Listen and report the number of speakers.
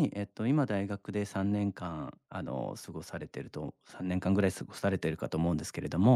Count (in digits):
1